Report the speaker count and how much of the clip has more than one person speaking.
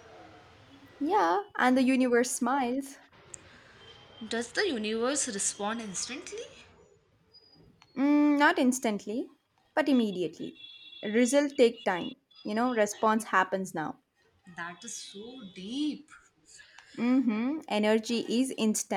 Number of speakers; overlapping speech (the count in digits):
2, no overlap